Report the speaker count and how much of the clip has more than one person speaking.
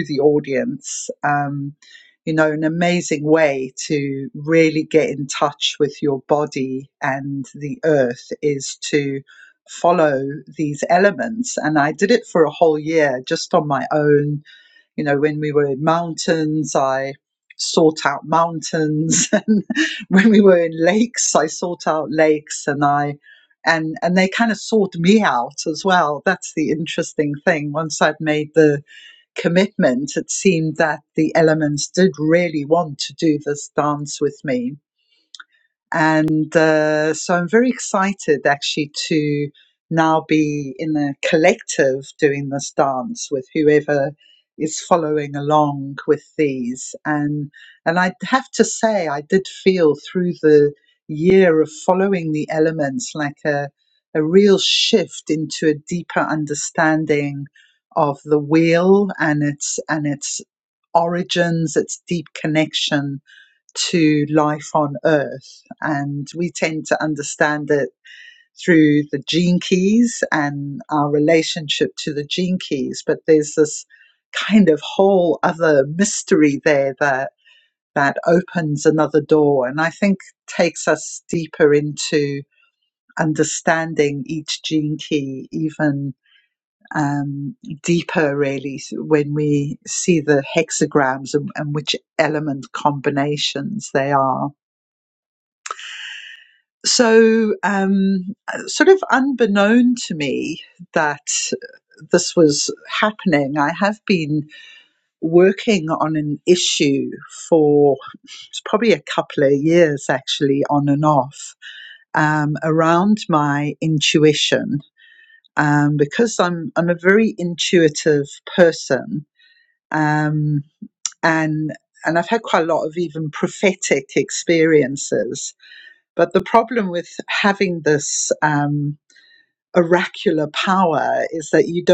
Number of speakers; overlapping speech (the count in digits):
1, no overlap